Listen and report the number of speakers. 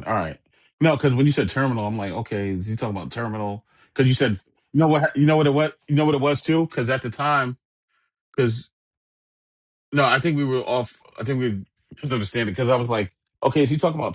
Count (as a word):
one